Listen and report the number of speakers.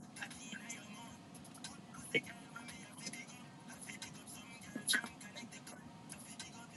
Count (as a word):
zero